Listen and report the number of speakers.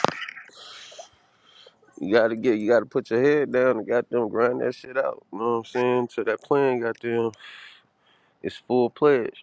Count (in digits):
1